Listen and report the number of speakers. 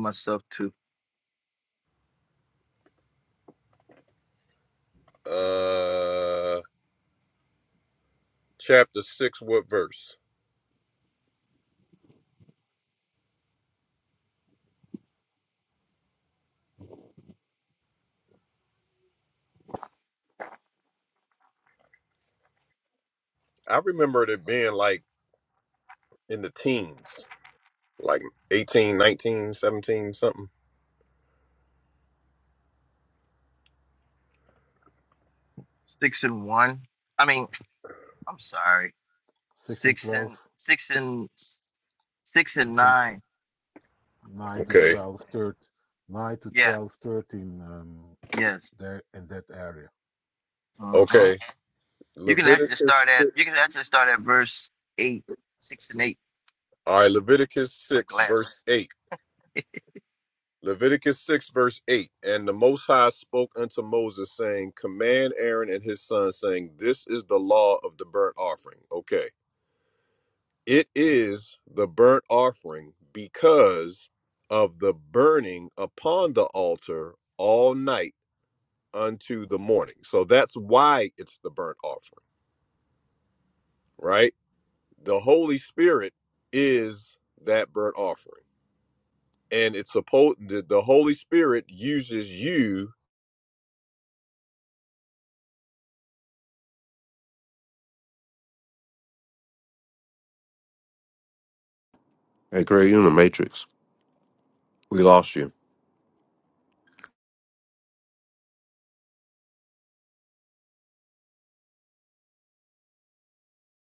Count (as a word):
four